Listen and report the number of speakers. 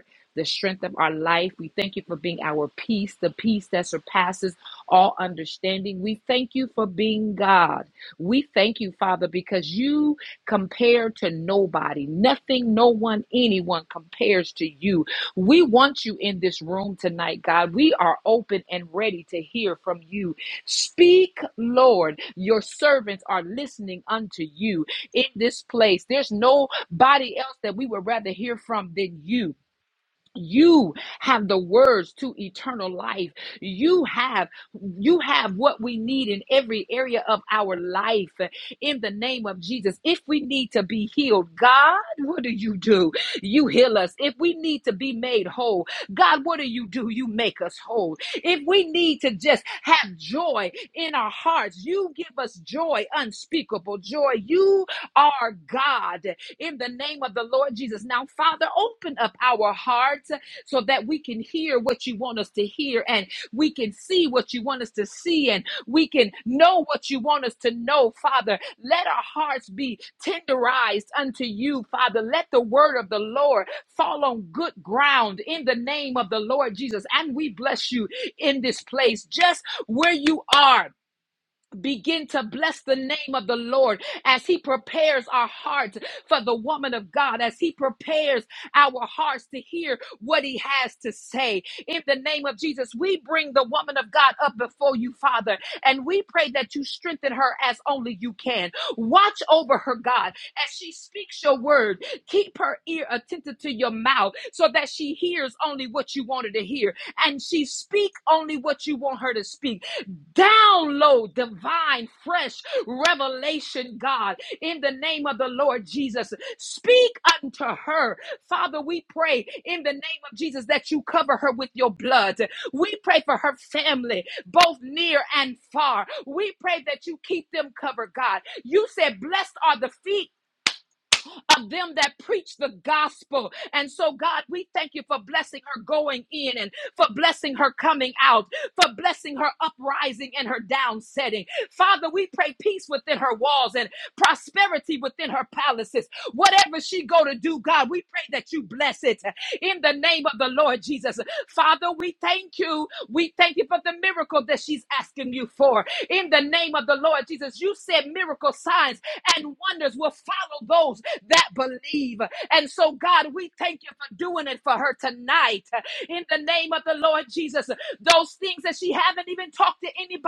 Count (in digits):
1